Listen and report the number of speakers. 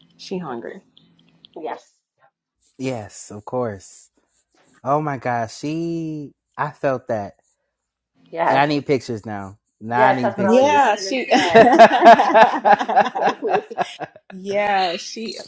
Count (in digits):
3